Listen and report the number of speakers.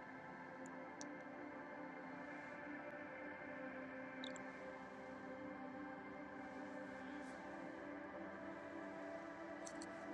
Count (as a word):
zero